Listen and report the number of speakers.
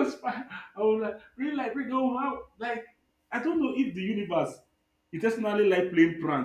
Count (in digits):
1